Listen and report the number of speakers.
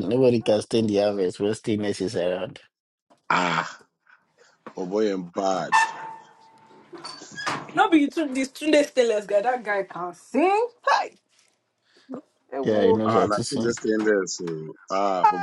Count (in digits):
3